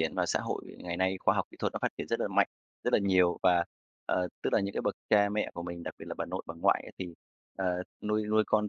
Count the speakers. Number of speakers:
1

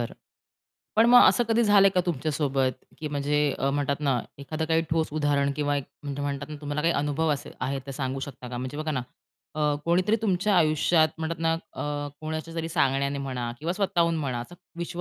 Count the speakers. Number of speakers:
1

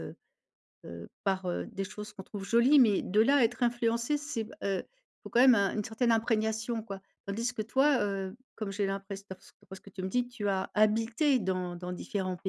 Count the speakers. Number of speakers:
1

